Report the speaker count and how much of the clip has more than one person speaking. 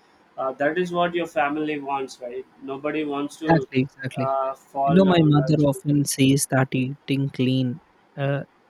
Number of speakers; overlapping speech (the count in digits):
2, about 15%